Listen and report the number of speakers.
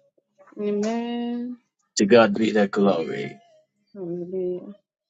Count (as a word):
two